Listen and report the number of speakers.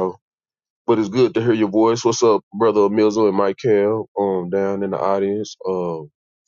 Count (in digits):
1